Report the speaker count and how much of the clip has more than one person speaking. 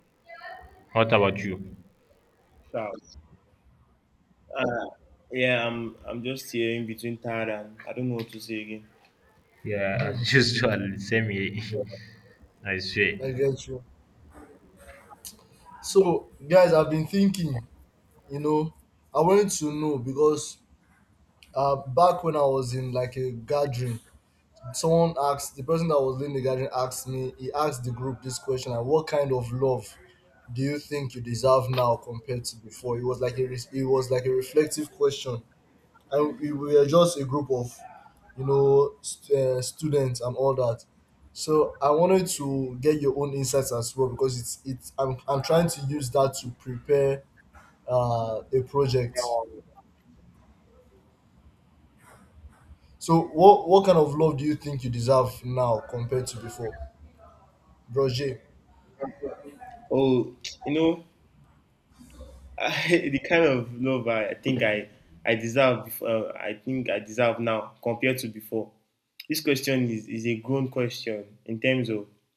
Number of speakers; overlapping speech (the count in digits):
3, no overlap